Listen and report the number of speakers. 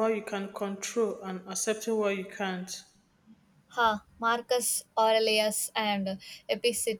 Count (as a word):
two